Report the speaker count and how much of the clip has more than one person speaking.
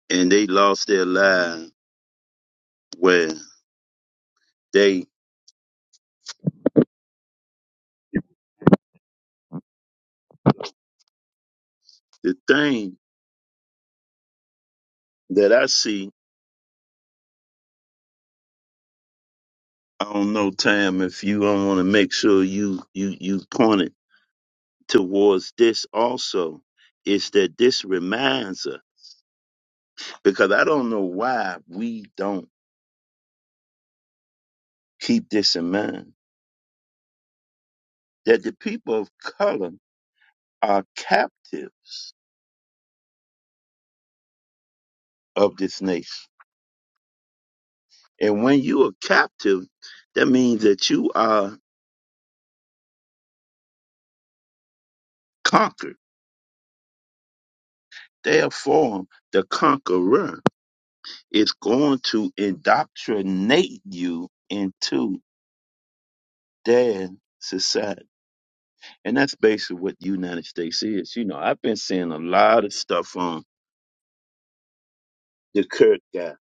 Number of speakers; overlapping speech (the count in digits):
1, no overlap